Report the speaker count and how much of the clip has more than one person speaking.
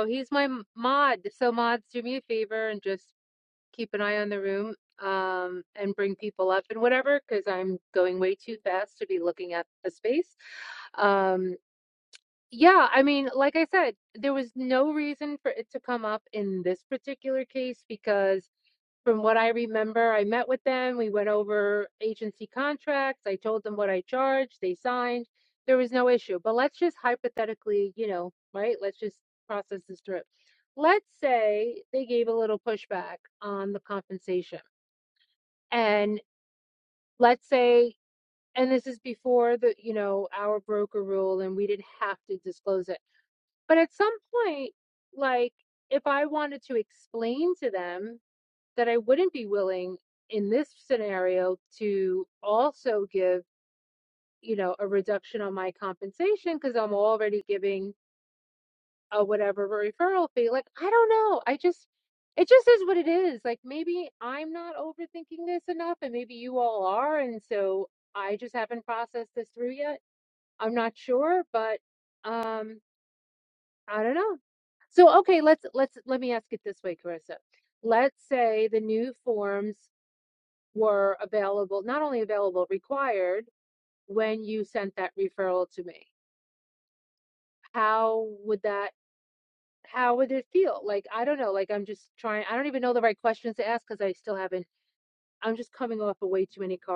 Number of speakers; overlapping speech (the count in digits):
1, no overlap